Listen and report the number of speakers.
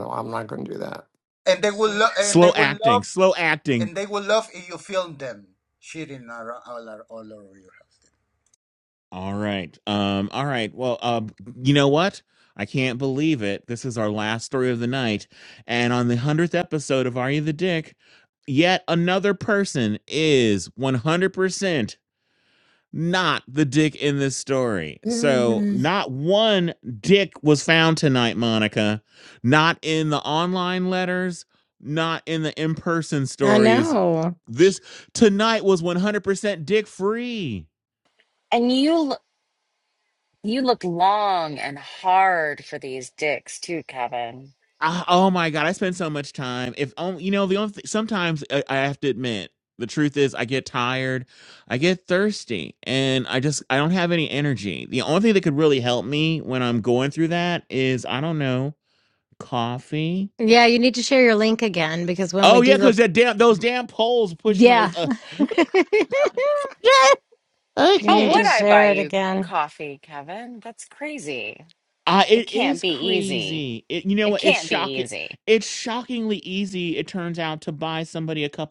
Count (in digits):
5